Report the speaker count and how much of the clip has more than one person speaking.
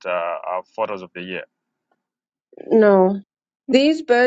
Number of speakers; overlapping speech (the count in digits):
2, no overlap